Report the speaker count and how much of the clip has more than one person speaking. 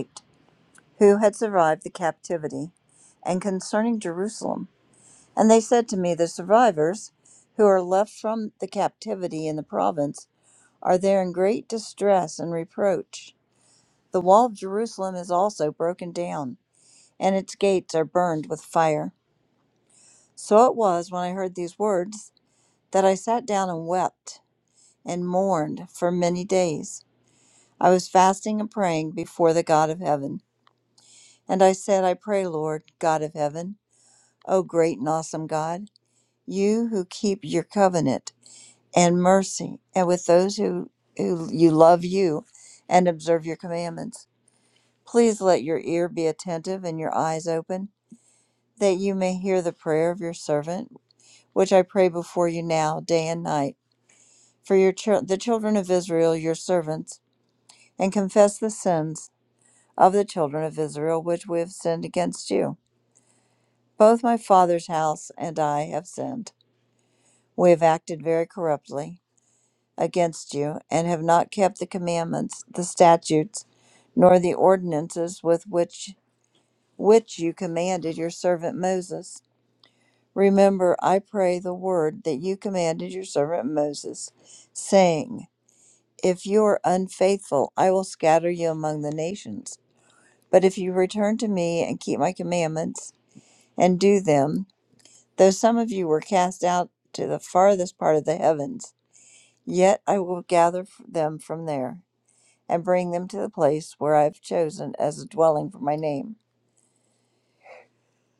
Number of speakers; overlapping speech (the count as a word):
one, no overlap